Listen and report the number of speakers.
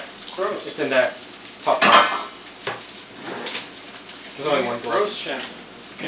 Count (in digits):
2